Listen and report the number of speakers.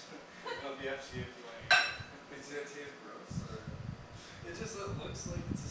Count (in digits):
2